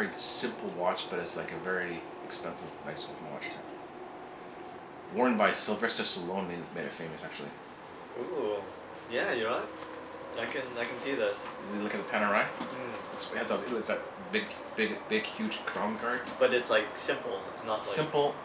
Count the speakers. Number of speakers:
2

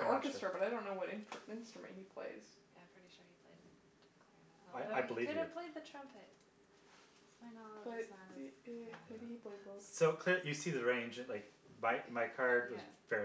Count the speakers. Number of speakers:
3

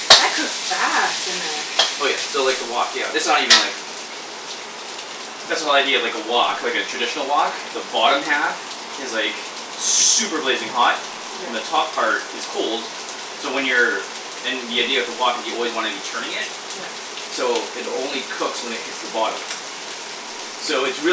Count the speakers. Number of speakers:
2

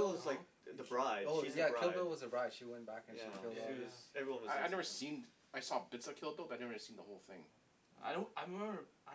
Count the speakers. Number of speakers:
4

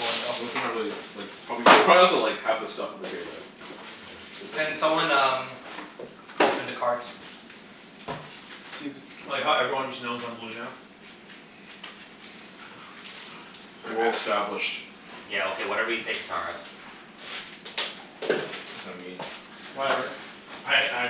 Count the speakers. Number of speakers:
4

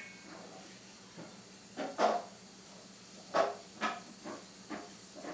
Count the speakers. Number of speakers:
0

